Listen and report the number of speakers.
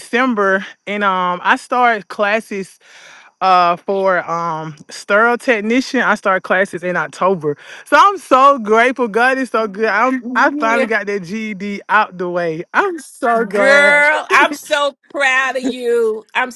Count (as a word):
two